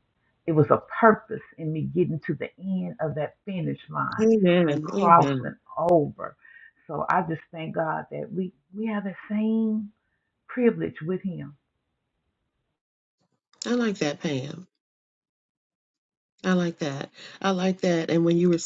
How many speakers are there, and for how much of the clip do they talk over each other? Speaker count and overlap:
two, about 5%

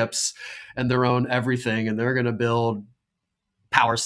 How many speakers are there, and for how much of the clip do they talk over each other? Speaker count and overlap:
one, no overlap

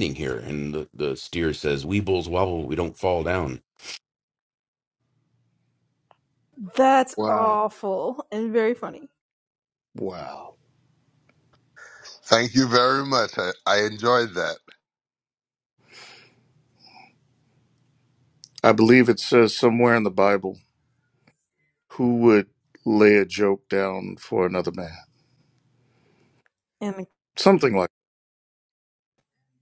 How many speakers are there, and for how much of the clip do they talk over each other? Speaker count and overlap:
four, about 1%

